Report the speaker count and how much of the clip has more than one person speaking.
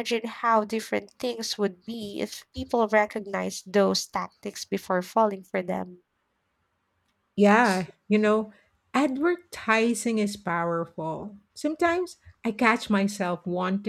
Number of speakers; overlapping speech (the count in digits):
2, no overlap